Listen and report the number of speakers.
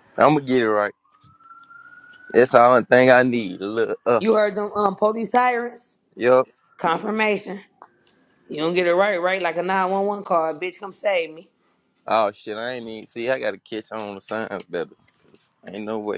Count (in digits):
2